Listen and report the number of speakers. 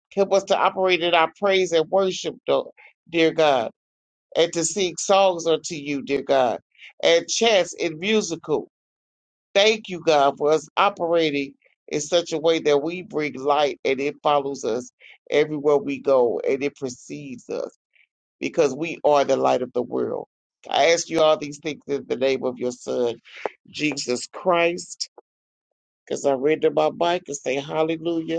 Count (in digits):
1